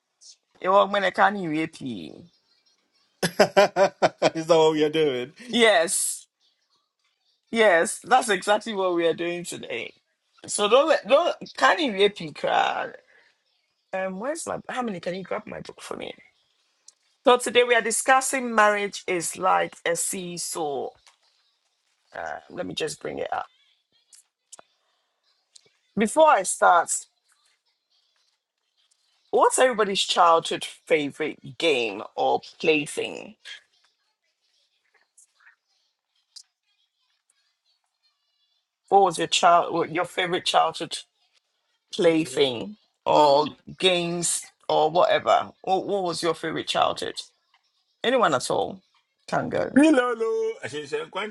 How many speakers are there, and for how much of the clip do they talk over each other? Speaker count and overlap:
3, no overlap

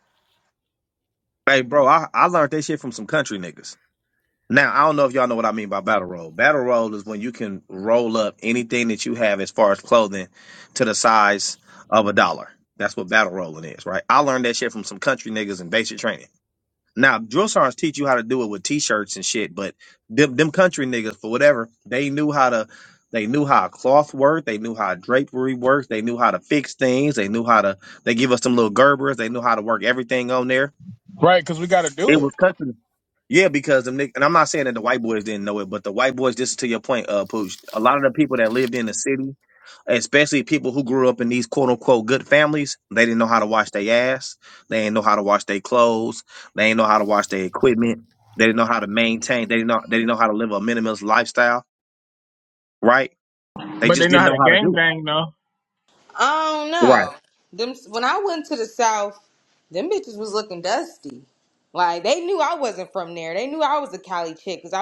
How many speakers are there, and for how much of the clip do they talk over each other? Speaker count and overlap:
3, about 2%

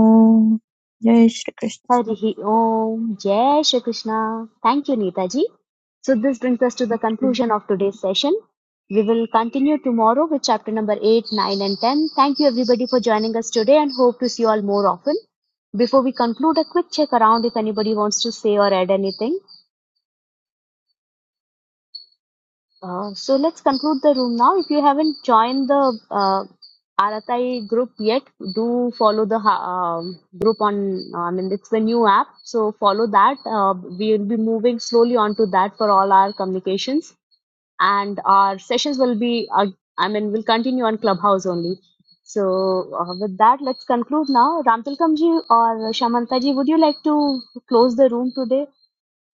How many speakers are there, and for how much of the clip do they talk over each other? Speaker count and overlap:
2, under 1%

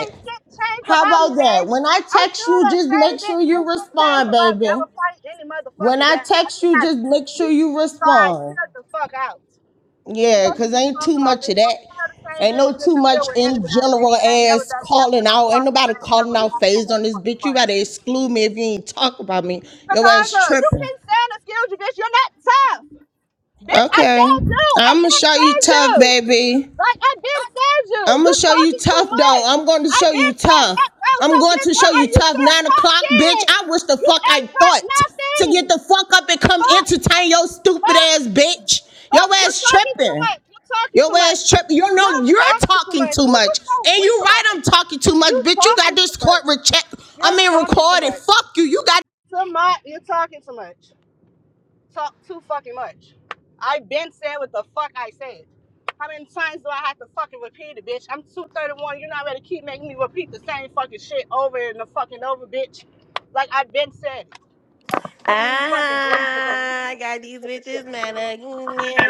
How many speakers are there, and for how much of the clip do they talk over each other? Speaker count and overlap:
3, about 42%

